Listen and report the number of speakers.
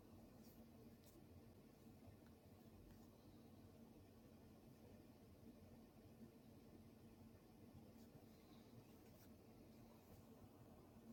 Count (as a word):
zero